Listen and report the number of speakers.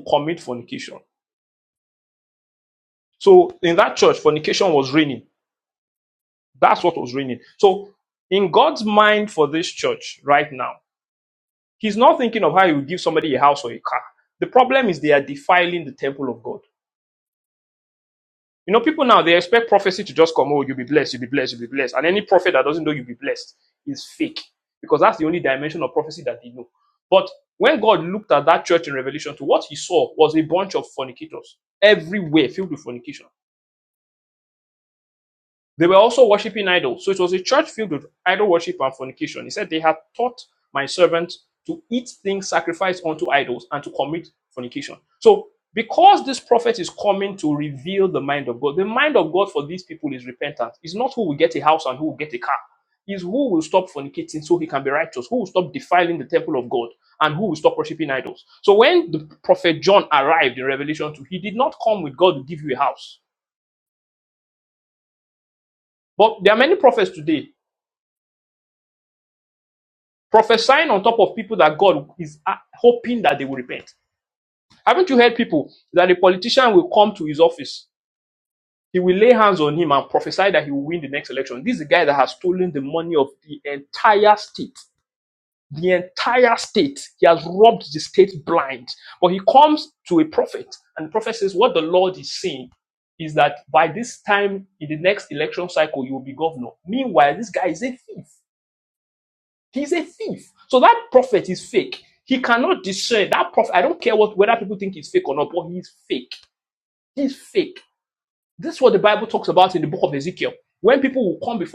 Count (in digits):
1